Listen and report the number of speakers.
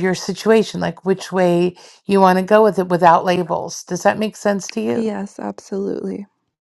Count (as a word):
two